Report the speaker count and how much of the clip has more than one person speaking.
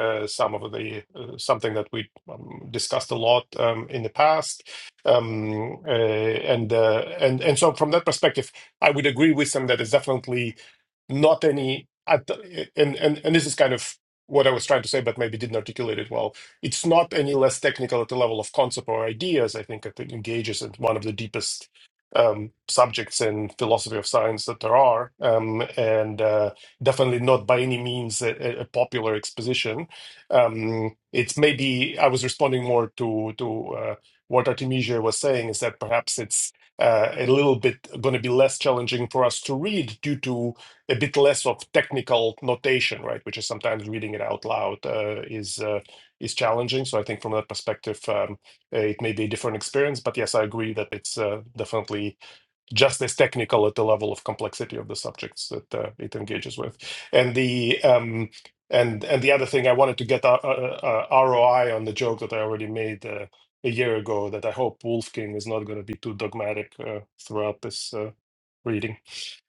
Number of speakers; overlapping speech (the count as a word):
one, no overlap